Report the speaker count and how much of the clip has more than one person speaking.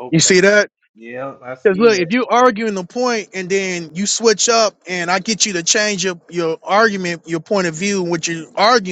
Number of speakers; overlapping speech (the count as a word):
two, about 8%